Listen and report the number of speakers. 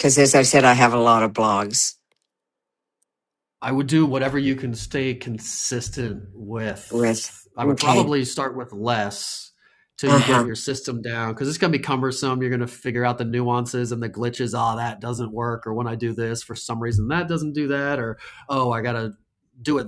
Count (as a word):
two